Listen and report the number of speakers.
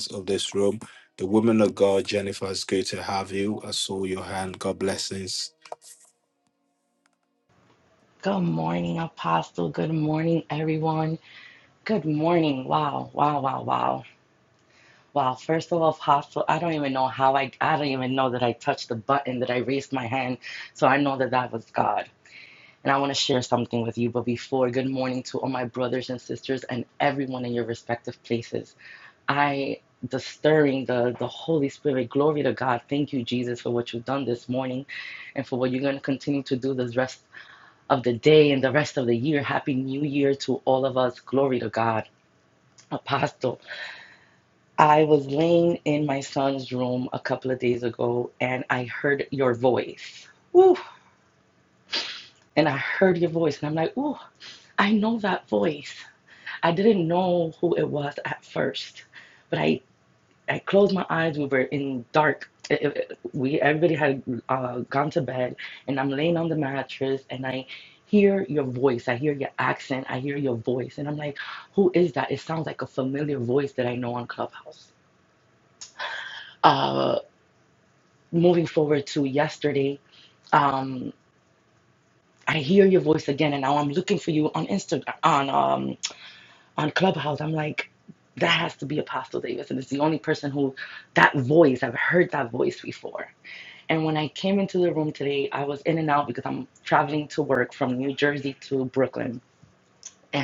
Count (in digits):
2